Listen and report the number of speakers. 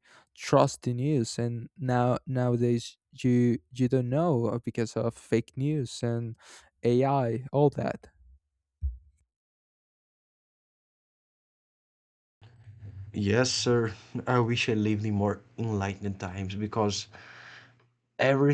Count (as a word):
two